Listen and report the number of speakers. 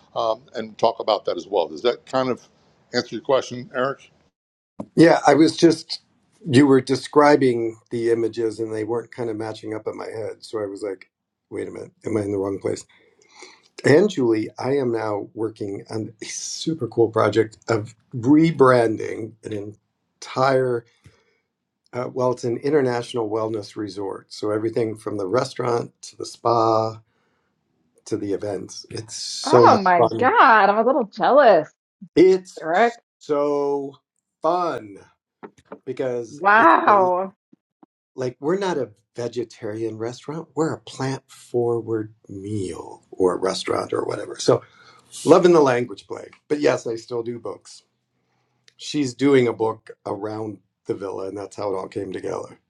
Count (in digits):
3